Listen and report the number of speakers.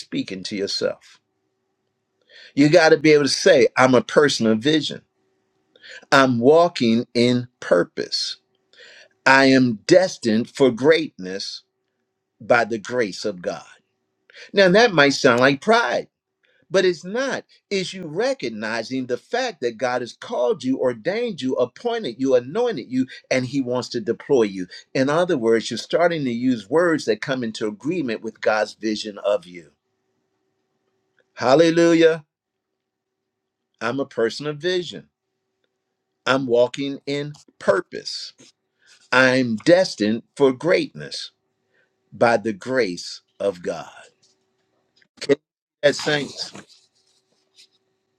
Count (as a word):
one